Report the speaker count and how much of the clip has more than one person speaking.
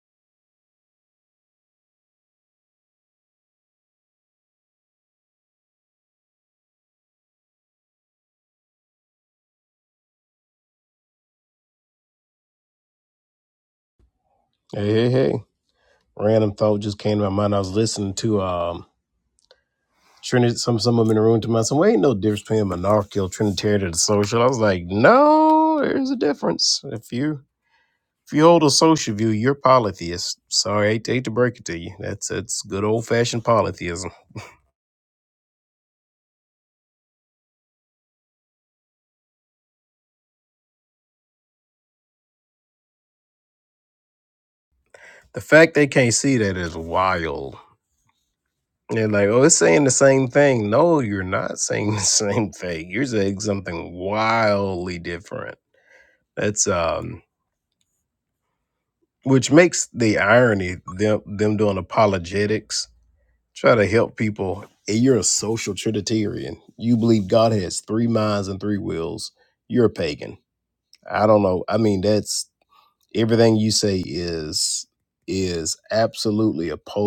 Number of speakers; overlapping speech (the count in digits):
1, no overlap